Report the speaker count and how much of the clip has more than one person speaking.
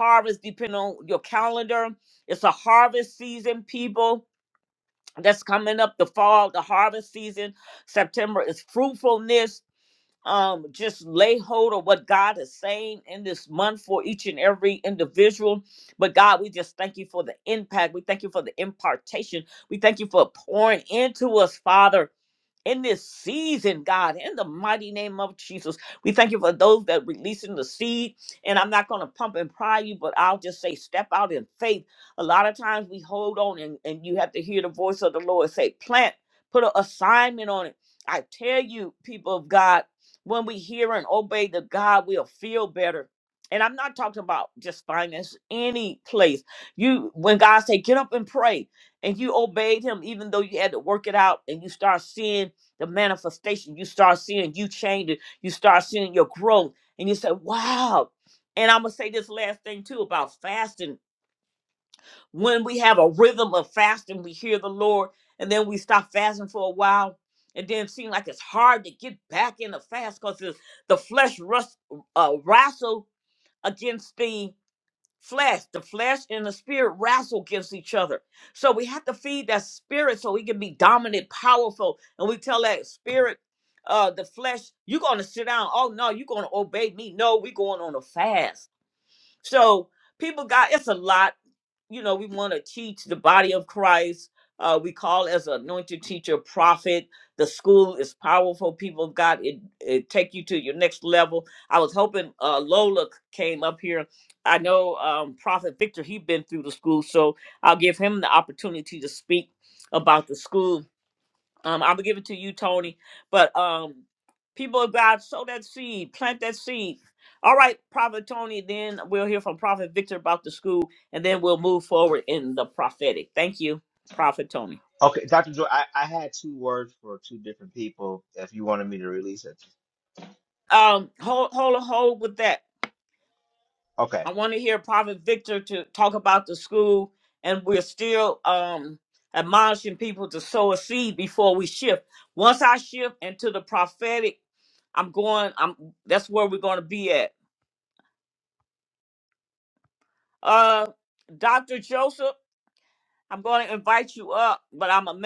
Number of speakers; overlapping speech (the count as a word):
two, under 1%